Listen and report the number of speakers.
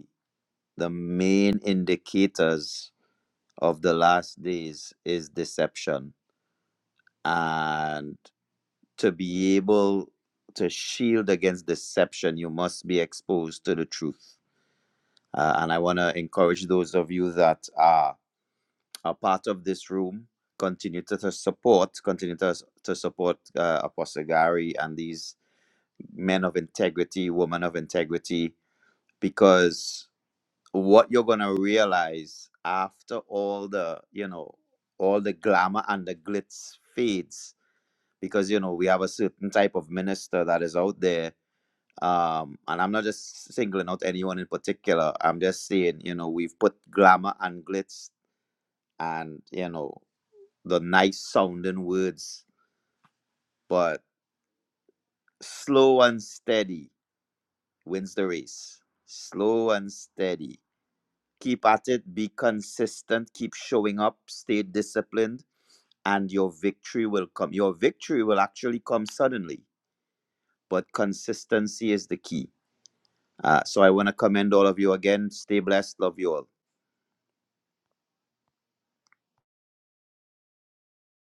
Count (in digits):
1